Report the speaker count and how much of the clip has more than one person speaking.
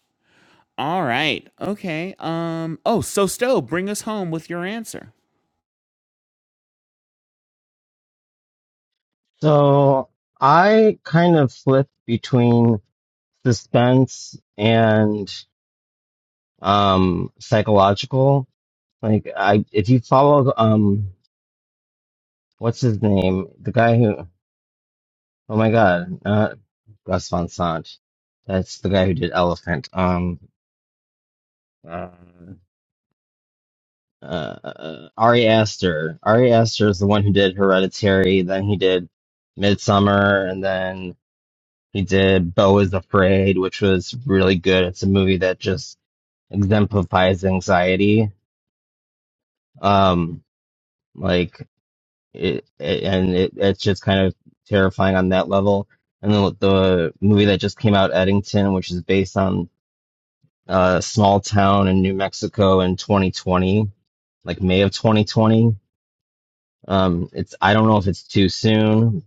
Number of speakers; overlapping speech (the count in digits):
2, no overlap